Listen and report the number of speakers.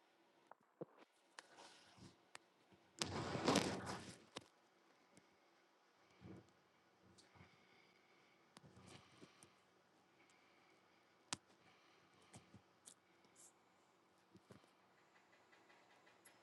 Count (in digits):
0